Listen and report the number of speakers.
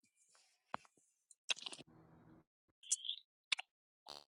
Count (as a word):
zero